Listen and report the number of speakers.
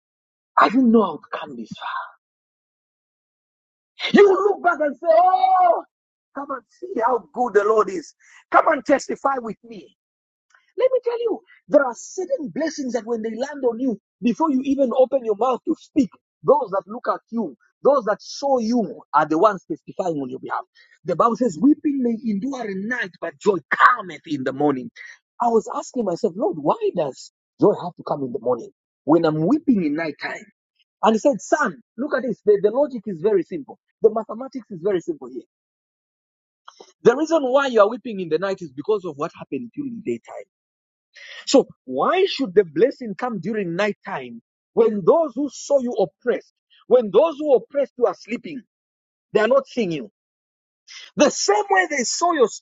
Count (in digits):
1